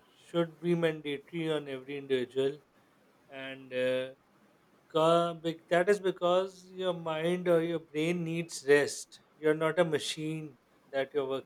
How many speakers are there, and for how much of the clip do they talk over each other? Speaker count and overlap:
1, no overlap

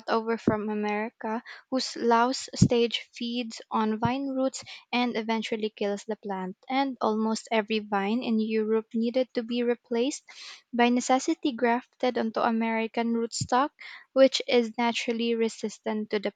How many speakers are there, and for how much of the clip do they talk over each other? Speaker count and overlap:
1, no overlap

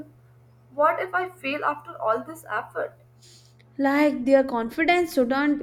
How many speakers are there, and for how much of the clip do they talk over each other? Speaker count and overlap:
2, no overlap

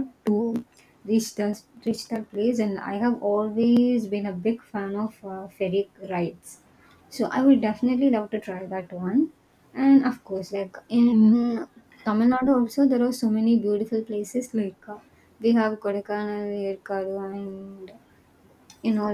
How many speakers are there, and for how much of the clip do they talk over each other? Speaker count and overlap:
1, no overlap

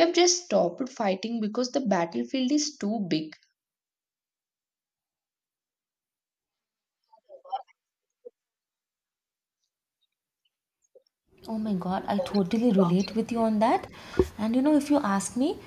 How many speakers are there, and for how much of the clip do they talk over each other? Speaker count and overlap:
2, no overlap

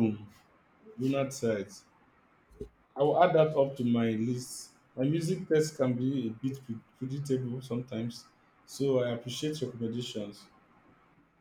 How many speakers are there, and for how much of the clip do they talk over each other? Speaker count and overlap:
1, no overlap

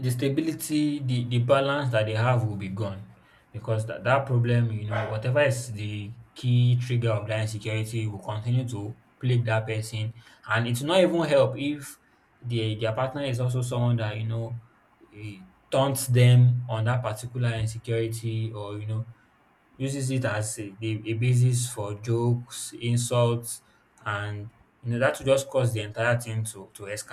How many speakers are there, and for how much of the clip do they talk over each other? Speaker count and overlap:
1, no overlap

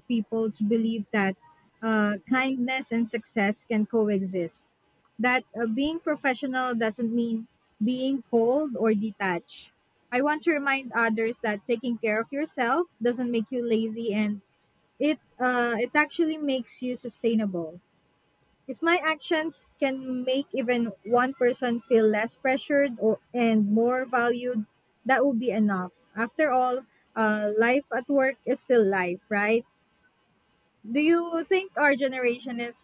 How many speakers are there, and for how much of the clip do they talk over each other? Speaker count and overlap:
1, no overlap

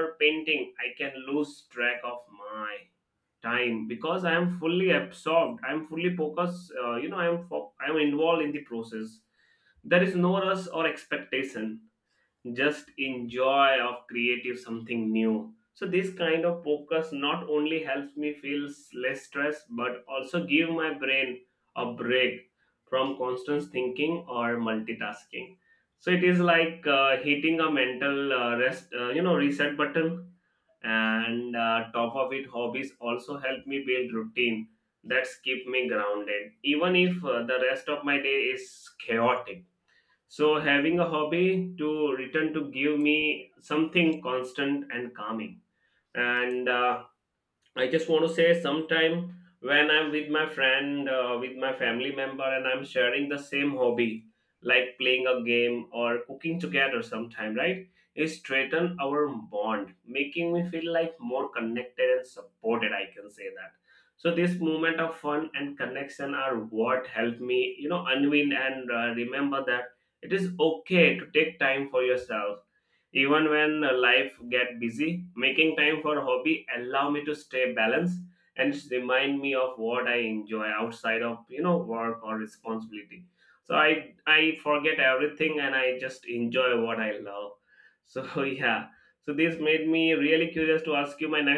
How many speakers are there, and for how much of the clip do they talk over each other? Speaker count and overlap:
1, no overlap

